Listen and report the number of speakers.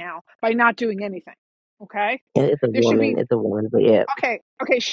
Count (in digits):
2